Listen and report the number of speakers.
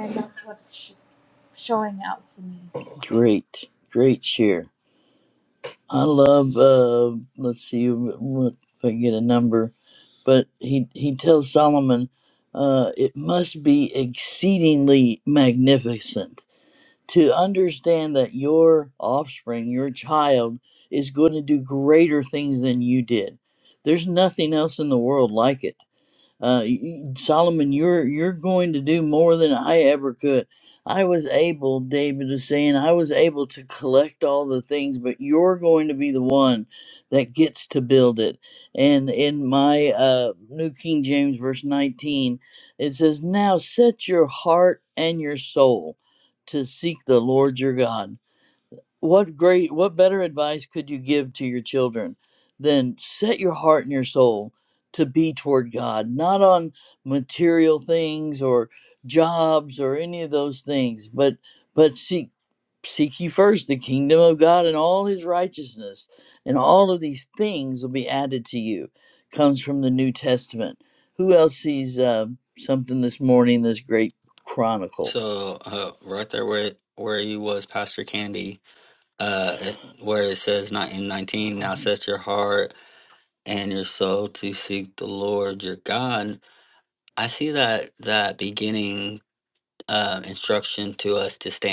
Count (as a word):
three